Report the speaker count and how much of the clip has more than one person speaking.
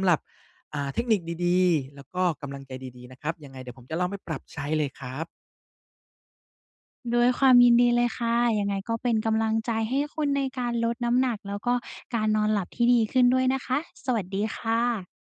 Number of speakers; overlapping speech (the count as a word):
two, no overlap